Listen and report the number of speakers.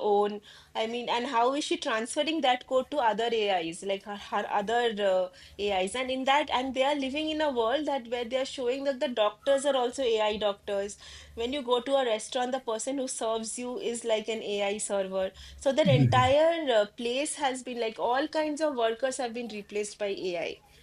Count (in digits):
1